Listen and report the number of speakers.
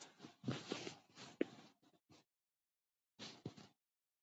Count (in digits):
0